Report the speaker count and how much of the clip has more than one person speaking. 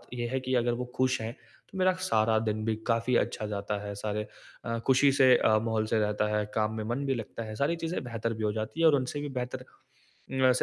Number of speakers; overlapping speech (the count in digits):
1, no overlap